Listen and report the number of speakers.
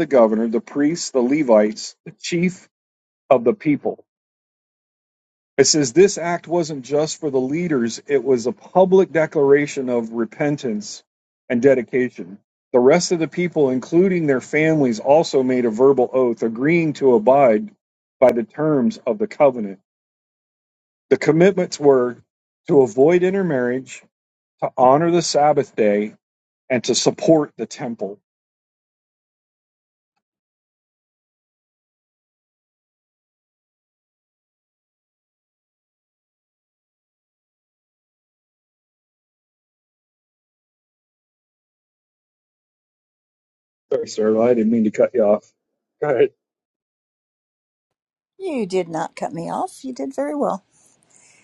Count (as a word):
two